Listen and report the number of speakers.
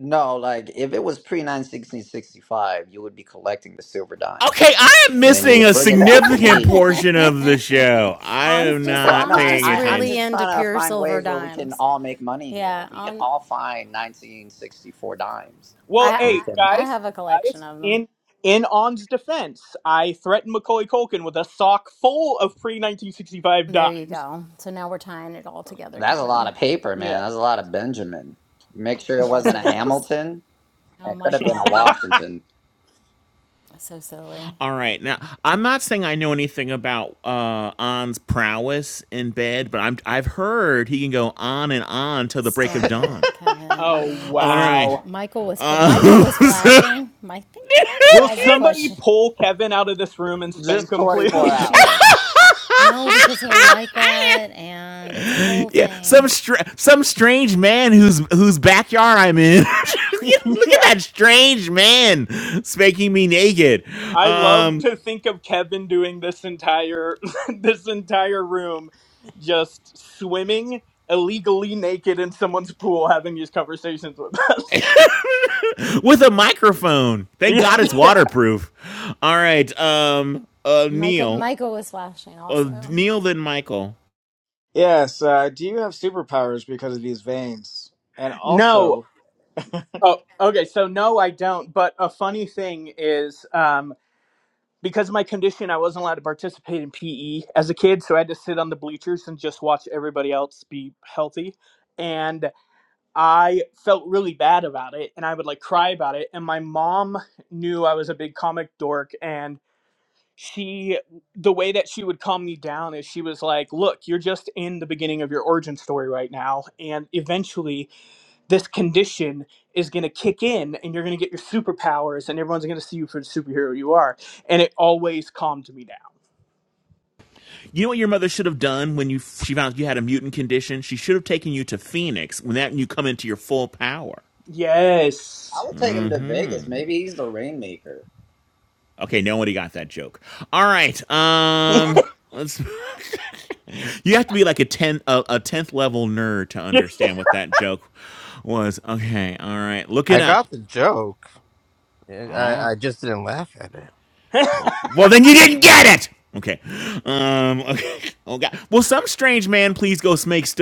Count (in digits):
6